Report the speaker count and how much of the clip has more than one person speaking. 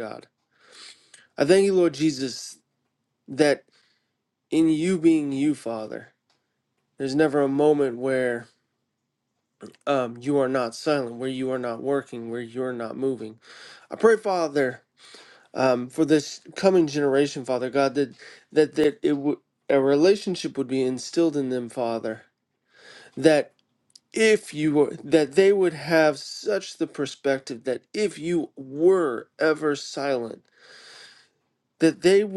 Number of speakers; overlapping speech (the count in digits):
1, no overlap